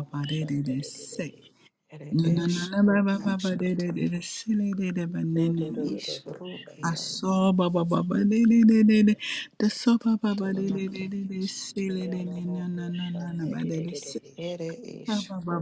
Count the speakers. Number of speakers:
three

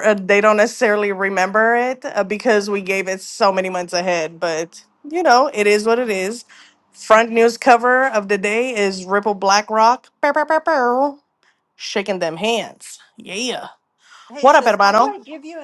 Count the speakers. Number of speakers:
two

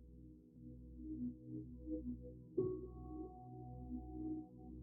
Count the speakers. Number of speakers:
zero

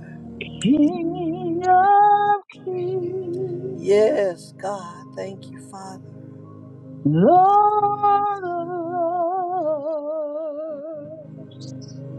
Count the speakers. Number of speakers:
two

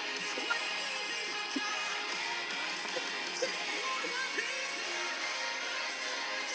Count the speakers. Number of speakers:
zero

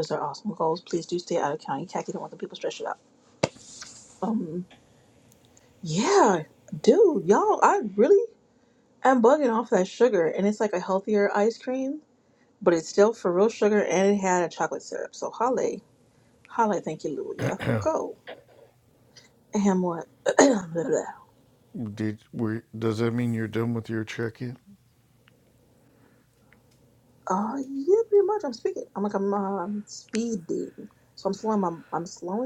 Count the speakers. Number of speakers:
two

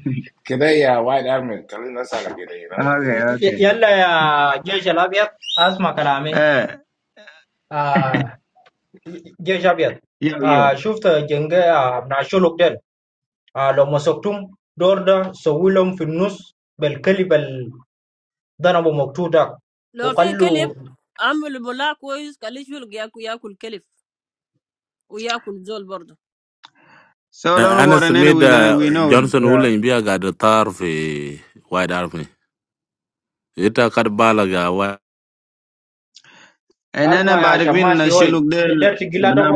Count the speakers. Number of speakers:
five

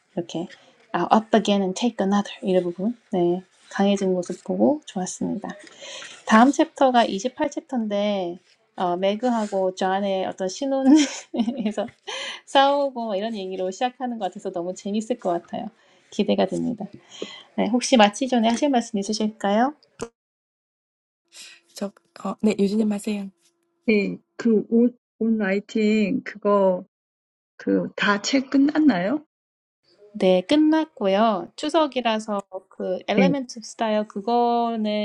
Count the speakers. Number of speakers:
three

